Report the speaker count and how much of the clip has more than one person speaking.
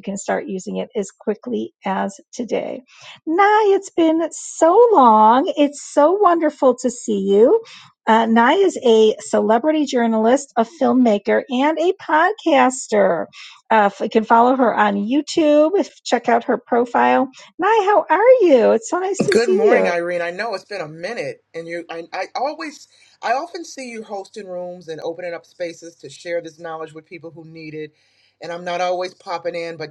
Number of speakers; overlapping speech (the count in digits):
2, about 2%